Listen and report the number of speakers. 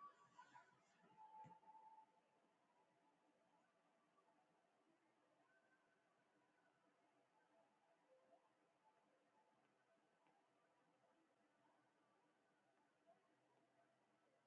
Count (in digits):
0